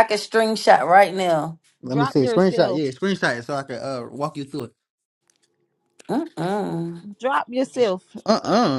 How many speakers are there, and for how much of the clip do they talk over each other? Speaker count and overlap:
three, about 10%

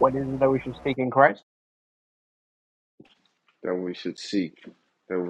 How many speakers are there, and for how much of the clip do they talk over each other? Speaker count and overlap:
two, no overlap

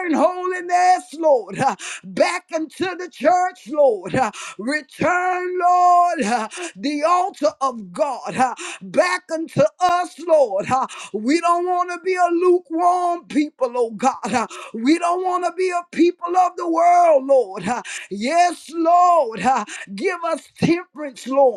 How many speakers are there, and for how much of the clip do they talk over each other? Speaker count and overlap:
one, no overlap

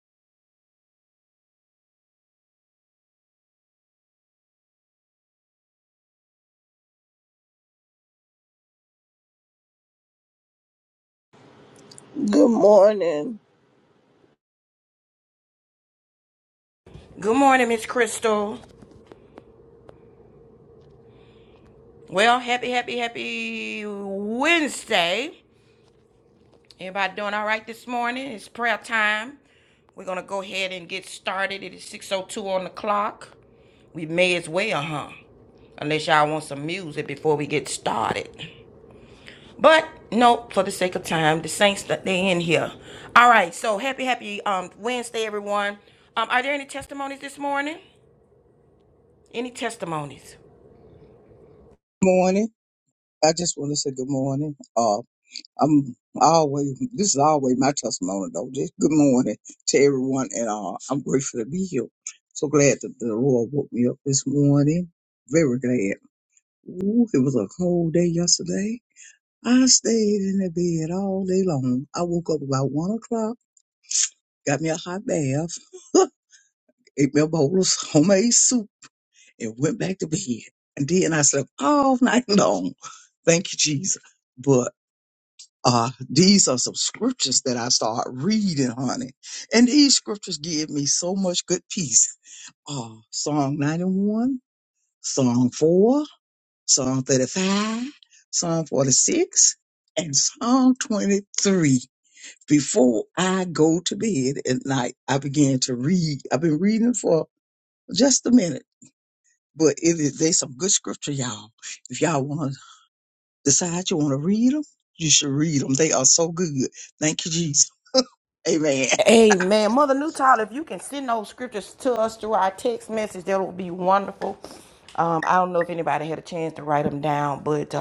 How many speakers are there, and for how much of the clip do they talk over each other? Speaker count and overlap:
three, no overlap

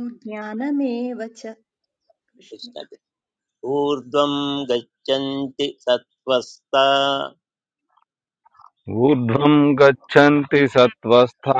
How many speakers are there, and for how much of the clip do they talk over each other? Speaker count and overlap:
three, no overlap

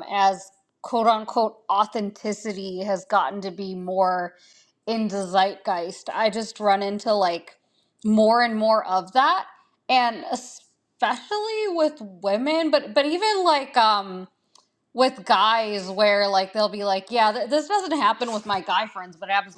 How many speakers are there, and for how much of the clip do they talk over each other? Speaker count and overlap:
one, no overlap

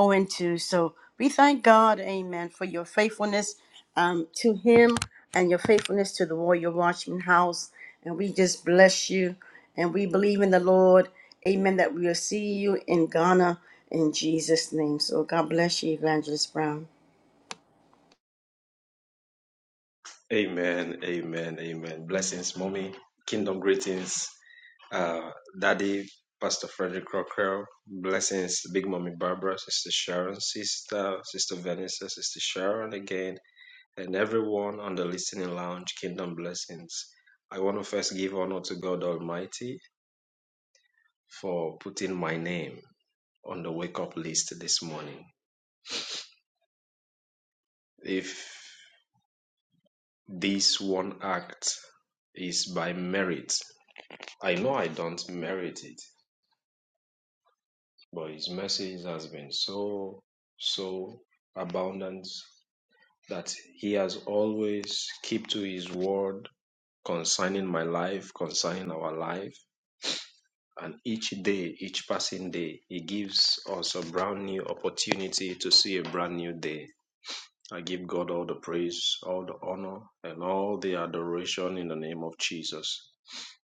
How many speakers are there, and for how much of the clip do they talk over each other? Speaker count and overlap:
two, no overlap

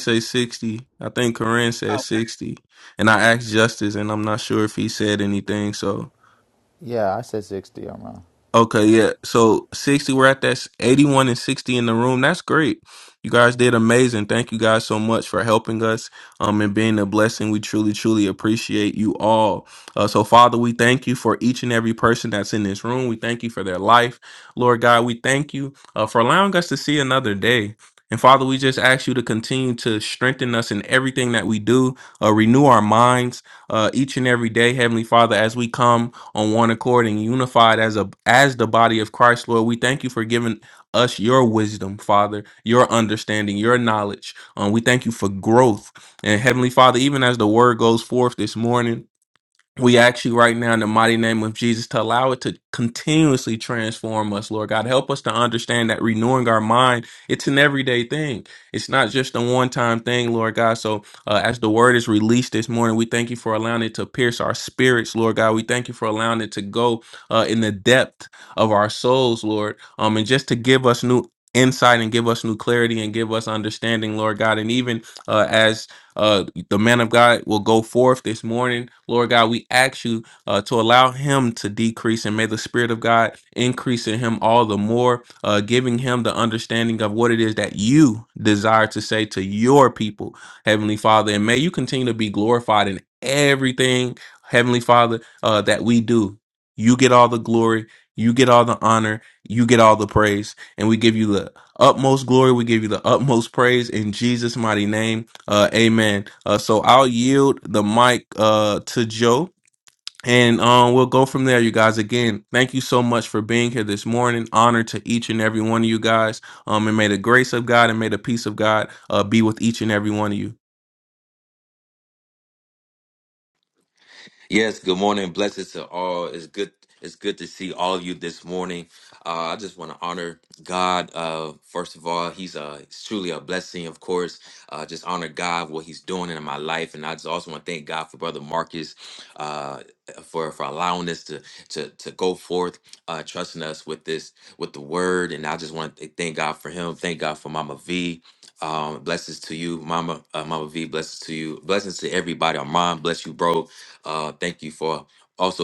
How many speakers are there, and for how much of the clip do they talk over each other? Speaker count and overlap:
three, no overlap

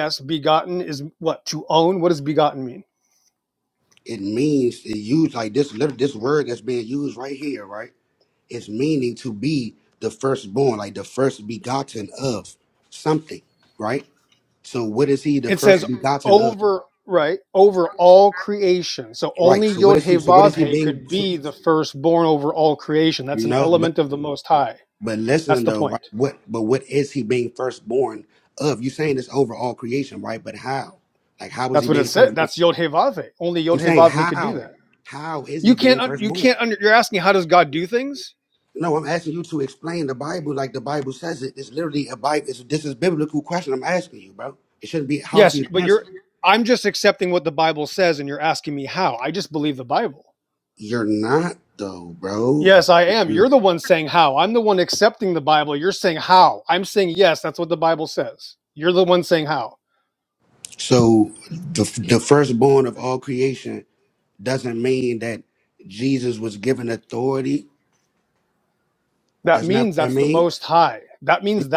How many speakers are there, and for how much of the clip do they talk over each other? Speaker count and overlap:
two, about 11%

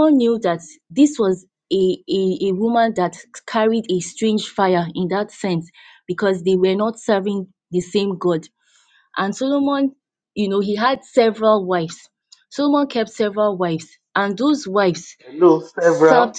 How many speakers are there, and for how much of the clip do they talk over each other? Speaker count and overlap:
two, about 2%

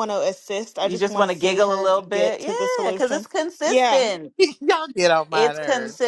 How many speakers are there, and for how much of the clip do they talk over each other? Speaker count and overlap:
three, about 57%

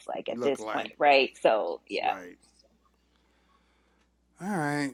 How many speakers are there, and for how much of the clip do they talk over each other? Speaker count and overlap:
two, about 13%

